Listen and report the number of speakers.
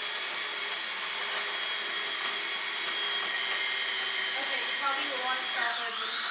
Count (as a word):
one